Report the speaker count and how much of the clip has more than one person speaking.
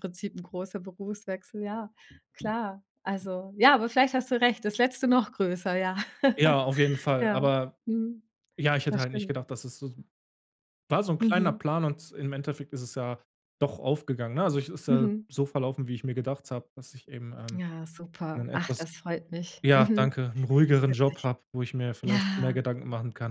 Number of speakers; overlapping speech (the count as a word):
two, about 12%